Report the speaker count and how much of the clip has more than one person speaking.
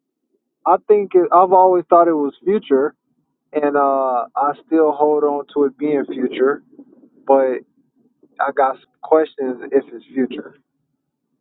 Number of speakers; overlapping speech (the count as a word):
one, no overlap